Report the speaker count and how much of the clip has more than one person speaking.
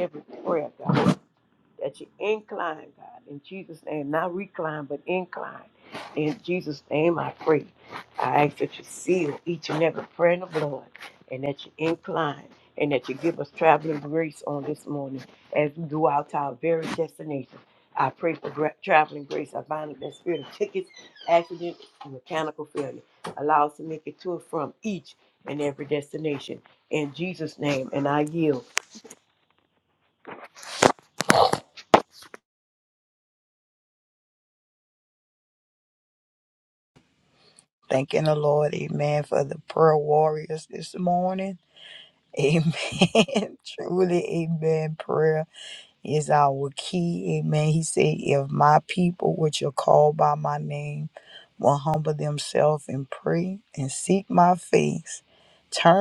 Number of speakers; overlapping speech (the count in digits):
2, no overlap